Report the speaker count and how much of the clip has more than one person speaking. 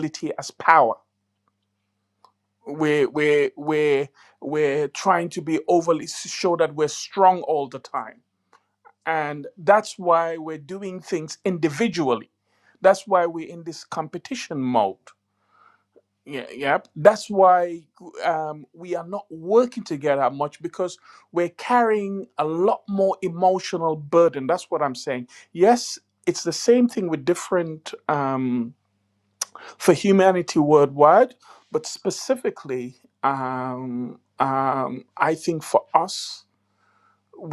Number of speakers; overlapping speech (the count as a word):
one, no overlap